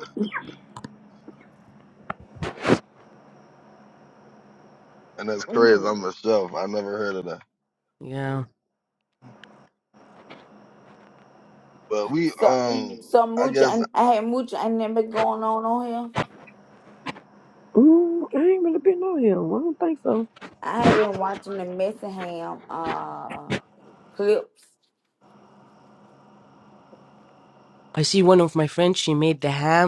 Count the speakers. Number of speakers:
4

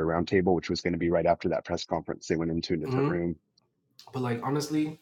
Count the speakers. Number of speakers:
2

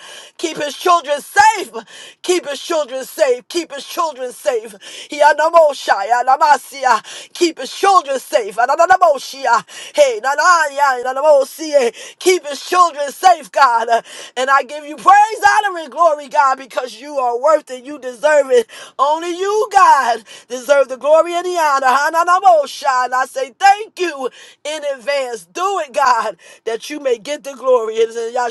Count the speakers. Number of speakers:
1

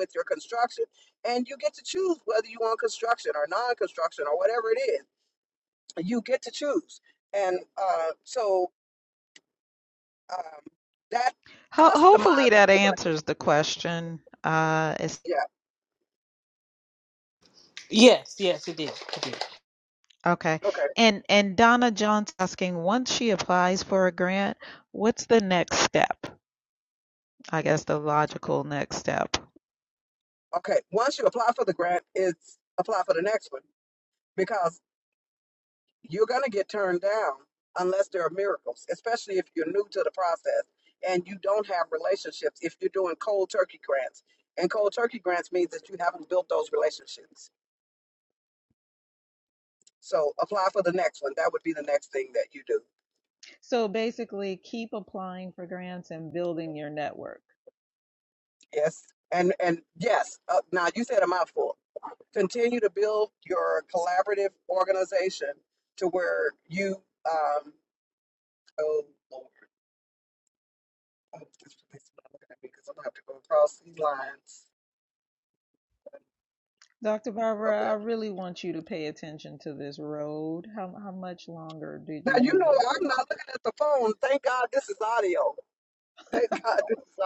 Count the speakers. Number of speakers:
3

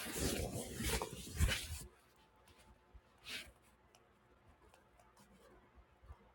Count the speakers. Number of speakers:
0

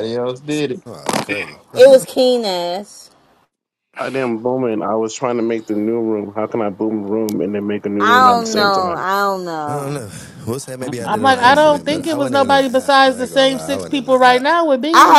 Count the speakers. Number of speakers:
5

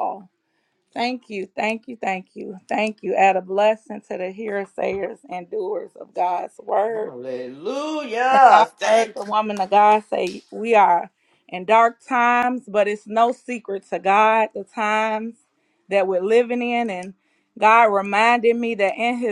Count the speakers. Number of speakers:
2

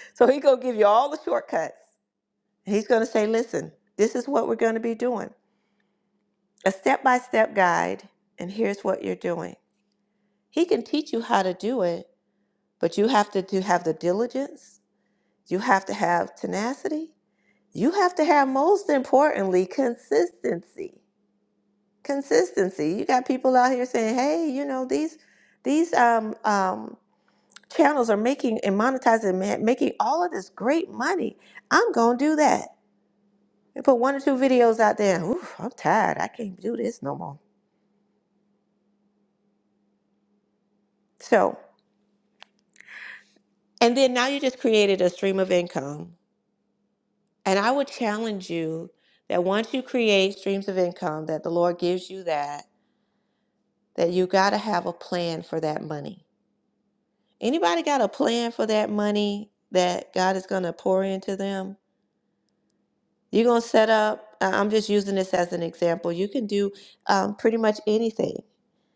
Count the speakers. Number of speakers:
1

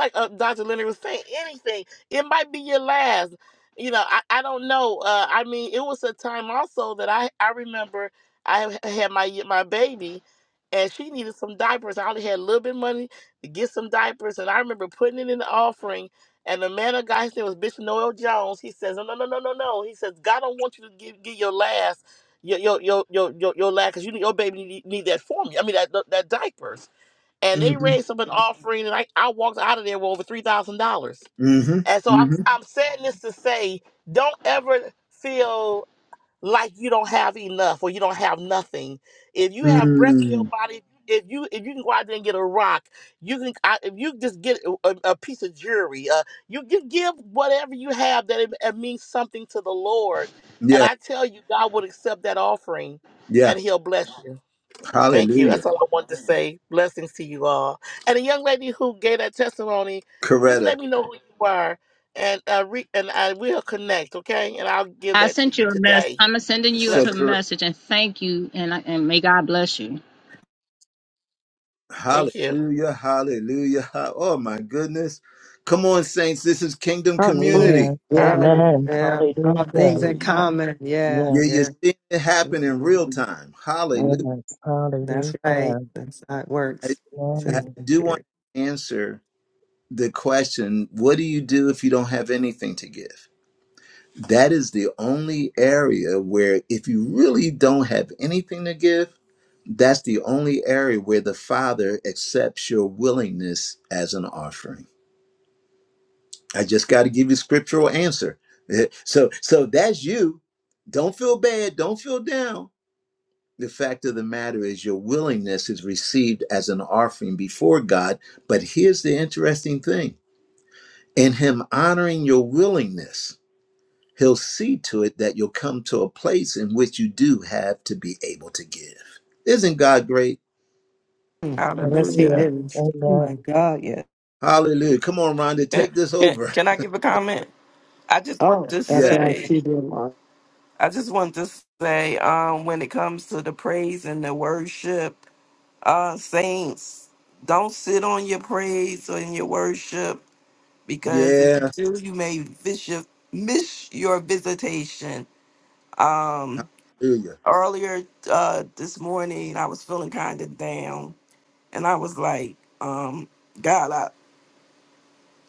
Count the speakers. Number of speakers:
6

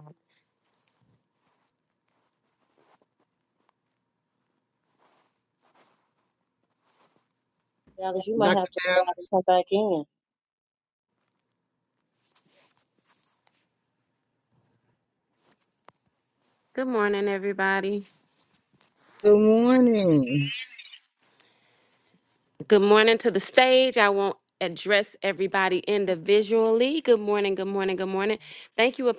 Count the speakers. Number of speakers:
3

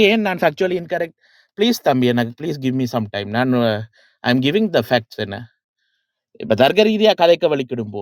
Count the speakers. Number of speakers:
1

